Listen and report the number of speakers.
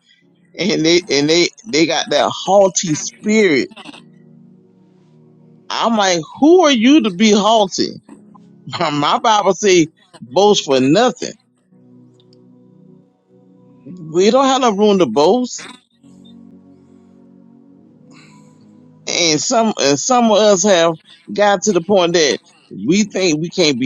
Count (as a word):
one